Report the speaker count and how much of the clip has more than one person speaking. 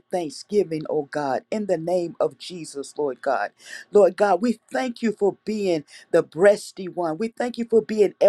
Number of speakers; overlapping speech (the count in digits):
1, no overlap